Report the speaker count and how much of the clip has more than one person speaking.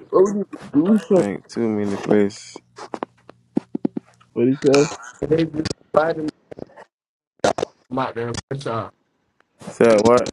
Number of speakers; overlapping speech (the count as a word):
three, about 1%